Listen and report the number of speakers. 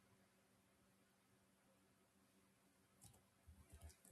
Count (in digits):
0